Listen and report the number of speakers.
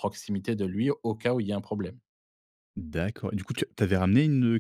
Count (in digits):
2